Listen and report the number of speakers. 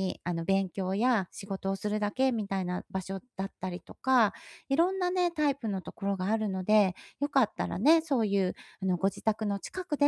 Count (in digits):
1